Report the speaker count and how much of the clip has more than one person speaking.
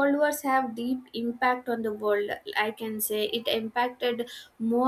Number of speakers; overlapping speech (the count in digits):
1, no overlap